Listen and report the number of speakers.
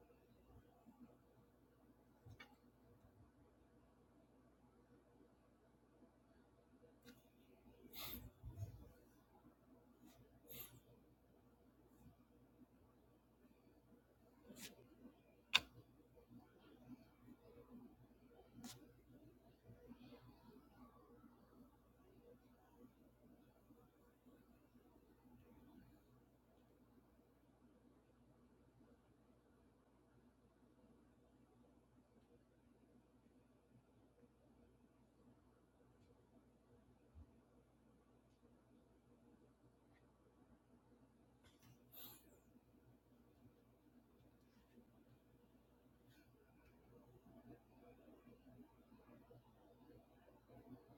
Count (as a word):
zero